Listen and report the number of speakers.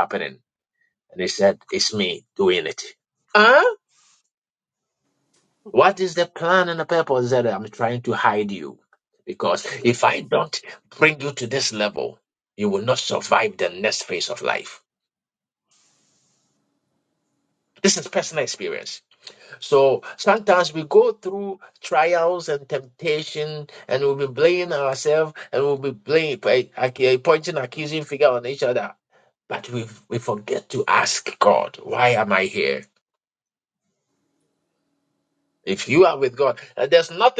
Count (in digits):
1